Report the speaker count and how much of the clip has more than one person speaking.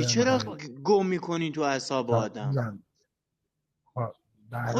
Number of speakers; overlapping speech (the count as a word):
two, about 22%